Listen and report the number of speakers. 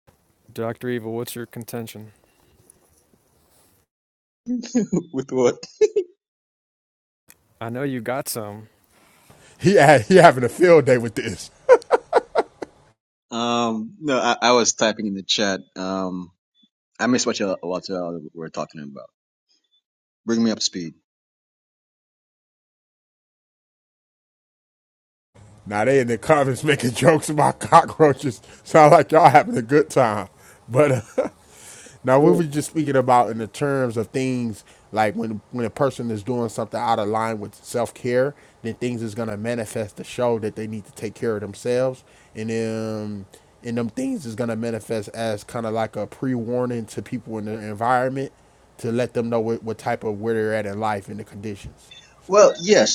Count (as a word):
three